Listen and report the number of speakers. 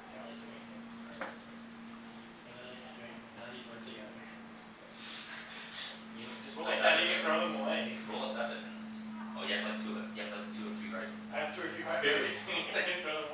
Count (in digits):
2